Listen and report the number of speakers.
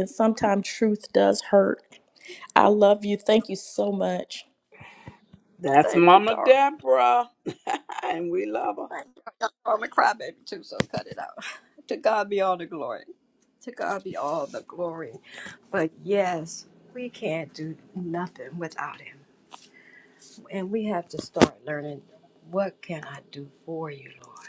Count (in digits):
3